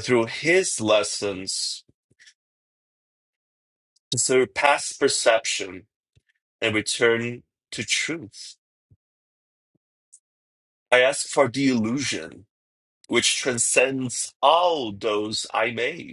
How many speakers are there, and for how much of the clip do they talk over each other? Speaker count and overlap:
1, no overlap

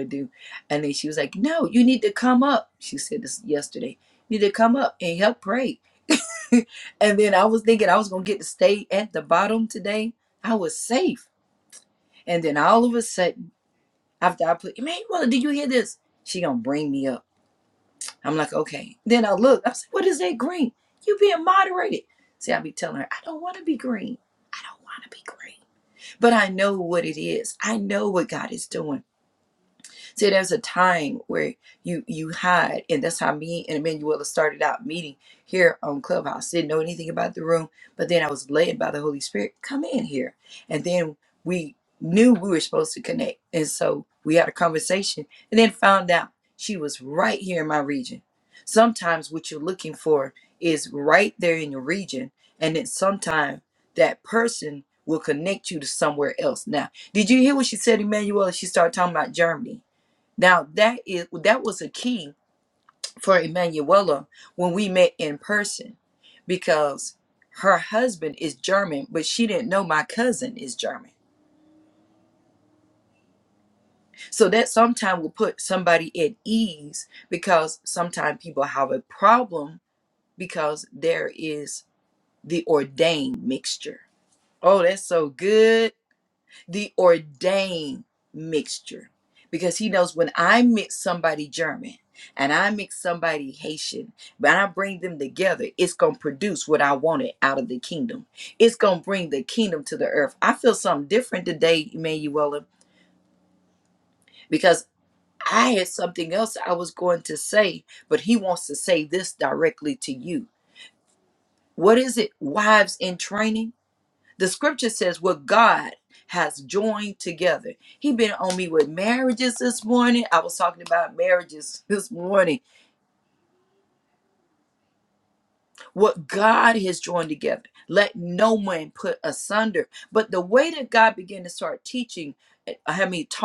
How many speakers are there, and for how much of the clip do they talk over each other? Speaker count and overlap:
1, no overlap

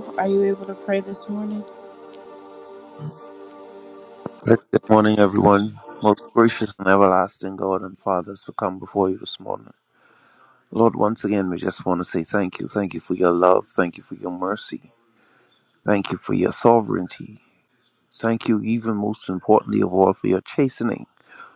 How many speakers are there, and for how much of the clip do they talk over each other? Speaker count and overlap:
2, no overlap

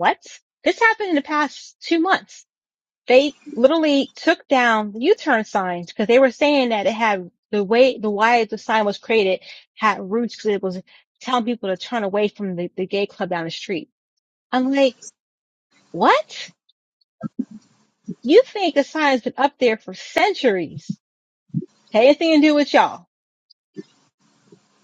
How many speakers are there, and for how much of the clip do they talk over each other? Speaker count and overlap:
1, no overlap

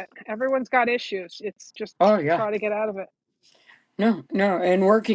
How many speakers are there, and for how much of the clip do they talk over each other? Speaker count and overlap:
2, about 2%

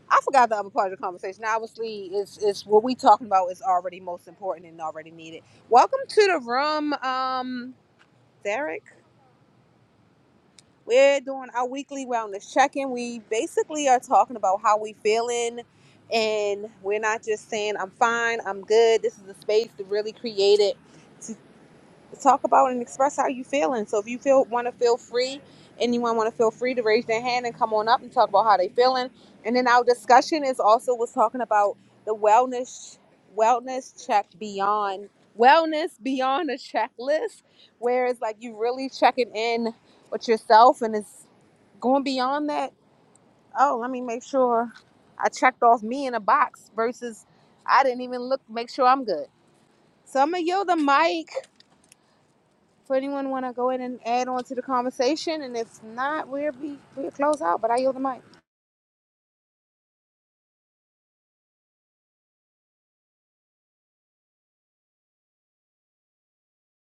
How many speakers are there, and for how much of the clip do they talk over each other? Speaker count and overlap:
1, no overlap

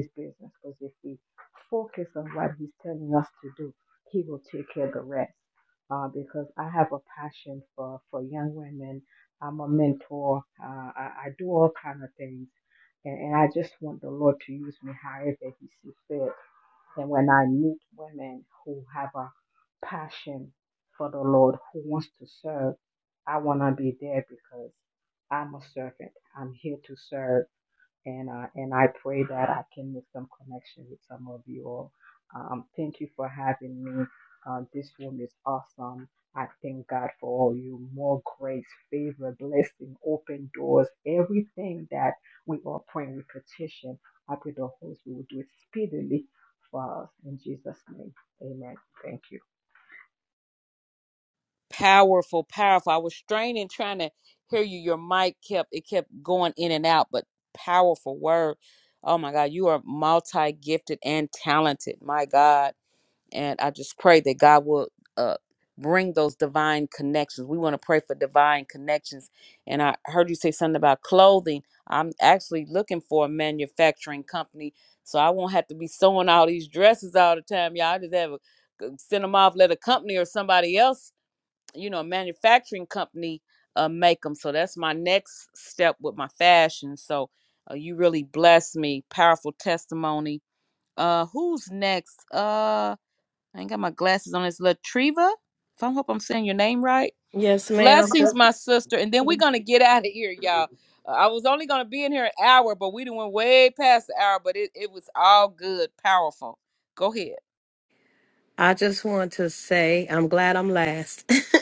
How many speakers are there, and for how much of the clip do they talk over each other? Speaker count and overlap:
3, under 1%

